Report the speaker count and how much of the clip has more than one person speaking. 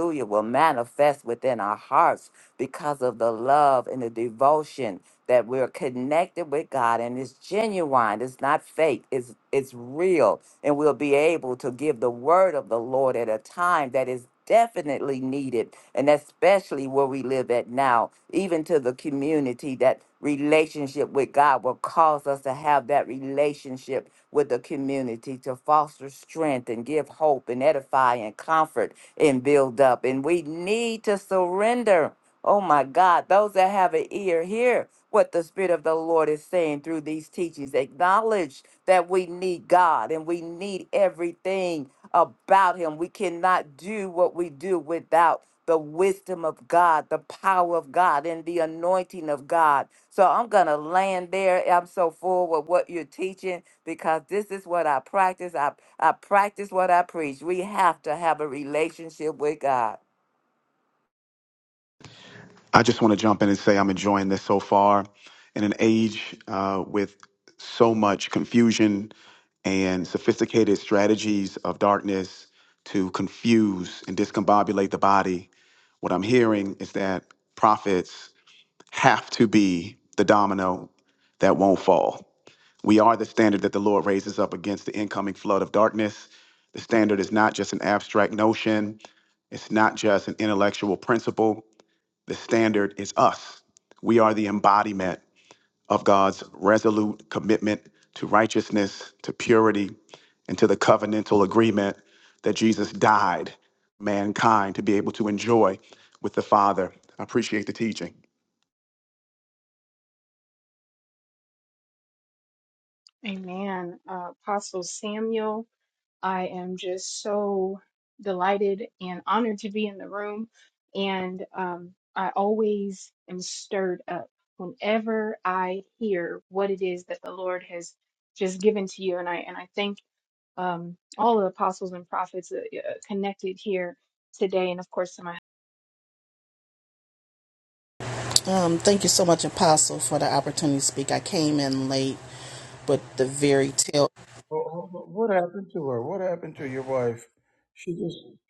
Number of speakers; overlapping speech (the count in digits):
5, no overlap